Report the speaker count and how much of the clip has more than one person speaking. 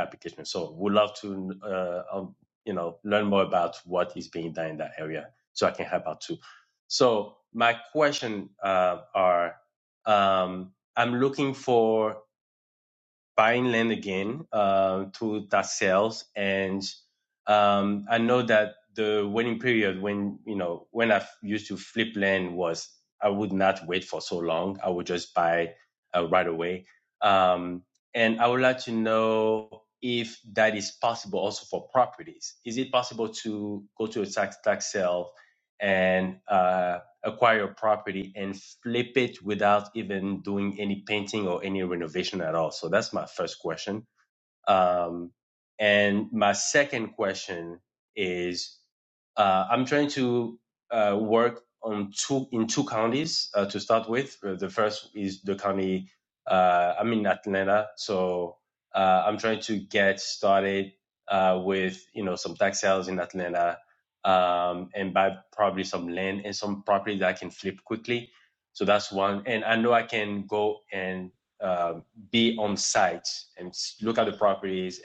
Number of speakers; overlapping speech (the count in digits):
1, no overlap